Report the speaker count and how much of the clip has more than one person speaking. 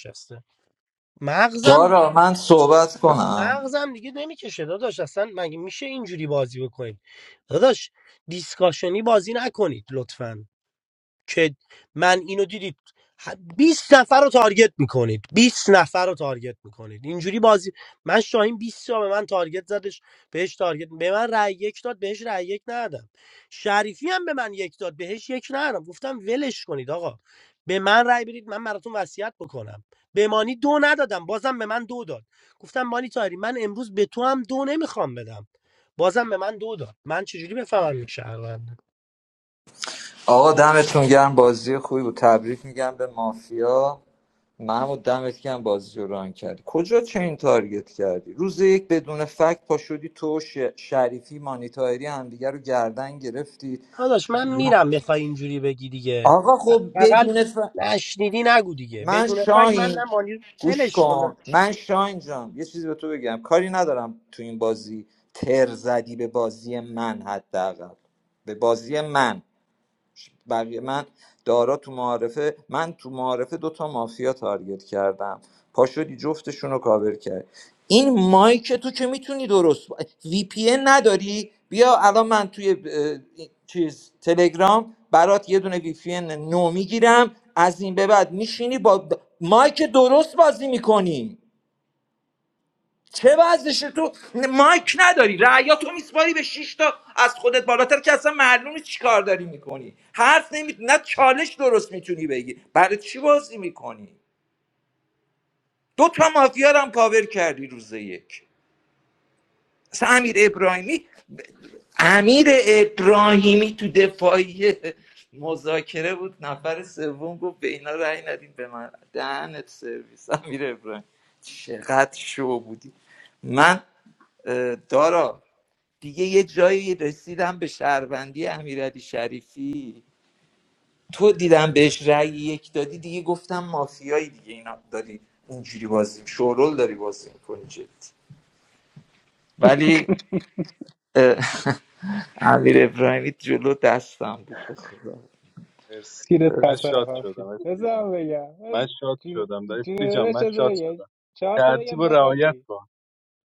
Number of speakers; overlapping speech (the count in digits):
4, about 4%